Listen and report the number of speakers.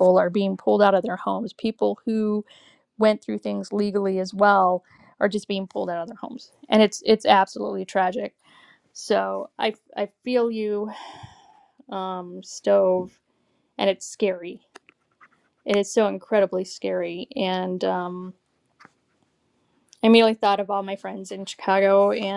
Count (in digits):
1